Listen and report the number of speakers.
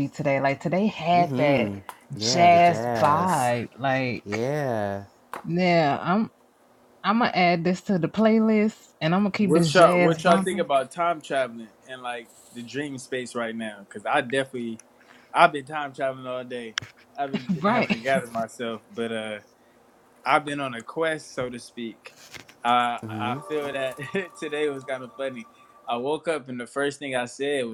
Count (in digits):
3